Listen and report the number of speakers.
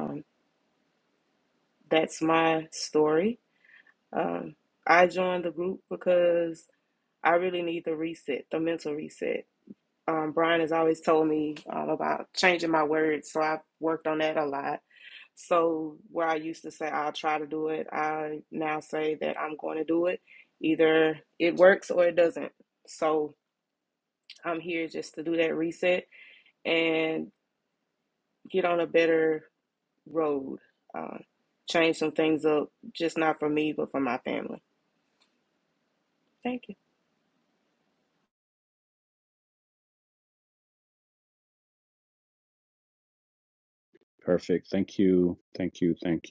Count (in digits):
2